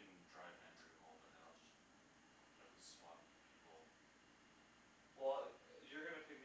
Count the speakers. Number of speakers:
2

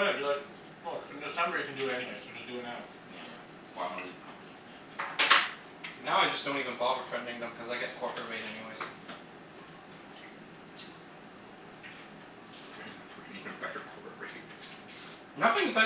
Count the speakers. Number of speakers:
3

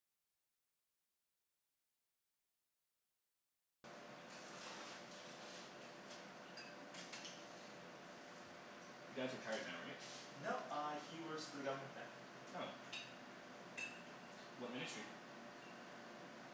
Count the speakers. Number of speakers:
2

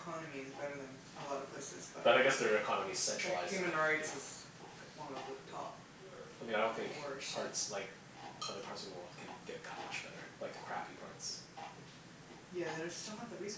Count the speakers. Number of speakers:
2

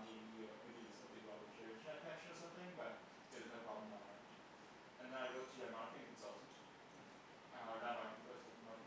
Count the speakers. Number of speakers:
1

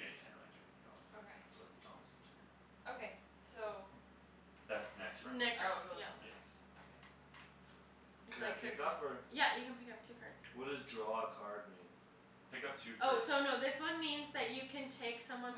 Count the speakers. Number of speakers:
4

